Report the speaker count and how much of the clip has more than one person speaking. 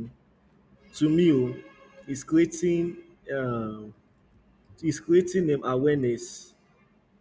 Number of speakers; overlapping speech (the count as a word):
one, no overlap